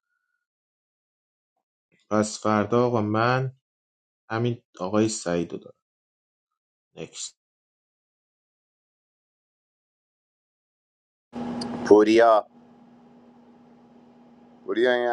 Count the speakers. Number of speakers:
2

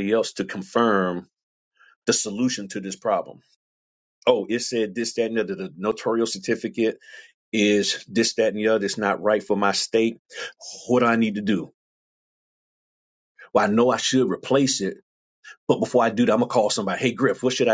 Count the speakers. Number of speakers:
1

